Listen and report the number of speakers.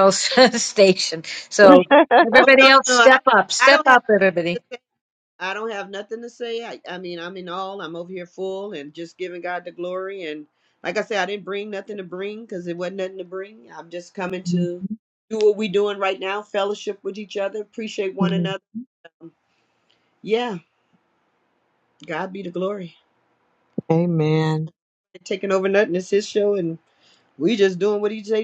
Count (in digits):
3